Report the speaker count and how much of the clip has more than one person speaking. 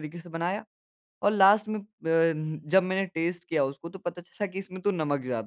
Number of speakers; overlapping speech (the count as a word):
one, no overlap